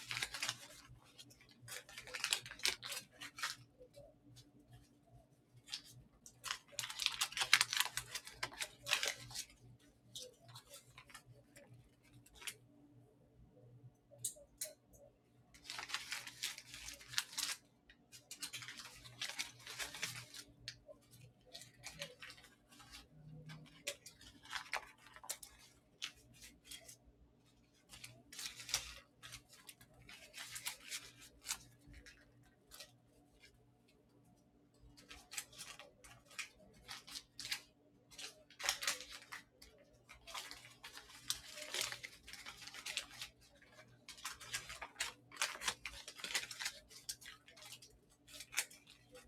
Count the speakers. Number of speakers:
zero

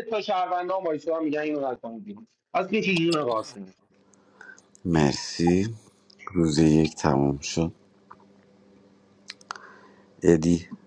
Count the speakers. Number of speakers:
two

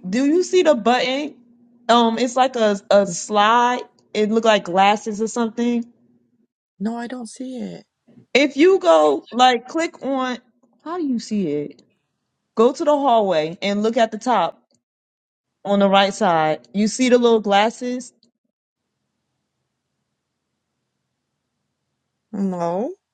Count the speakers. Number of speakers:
two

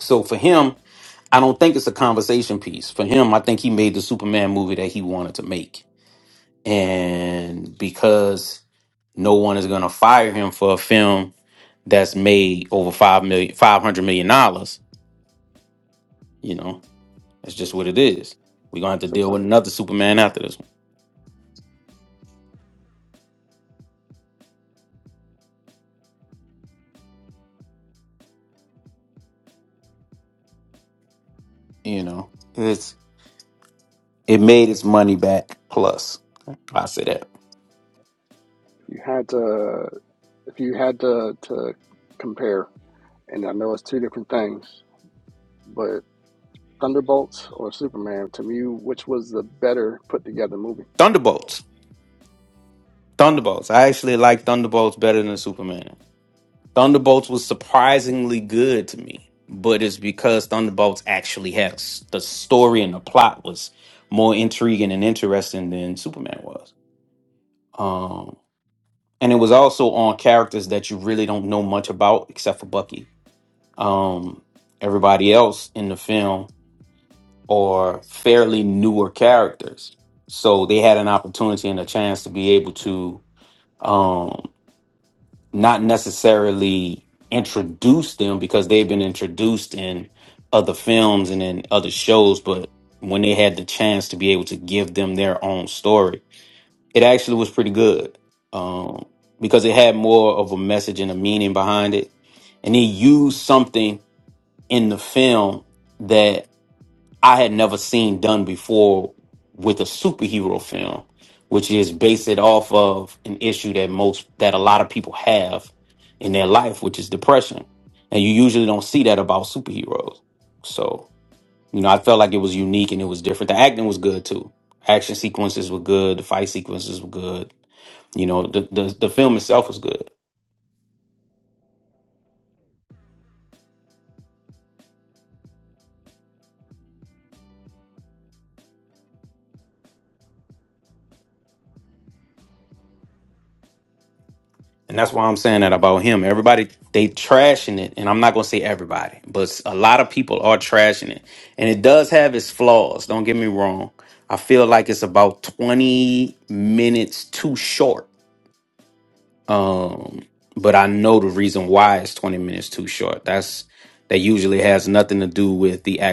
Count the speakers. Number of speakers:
two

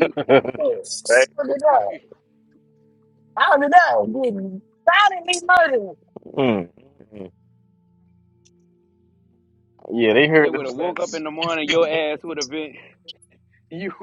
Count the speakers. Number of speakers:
three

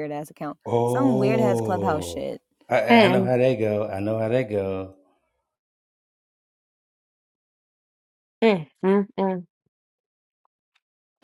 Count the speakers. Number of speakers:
three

